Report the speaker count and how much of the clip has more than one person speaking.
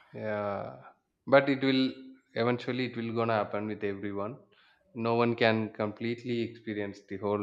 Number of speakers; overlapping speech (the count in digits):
1, no overlap